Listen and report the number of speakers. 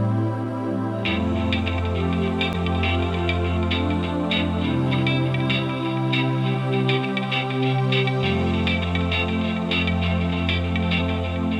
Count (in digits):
0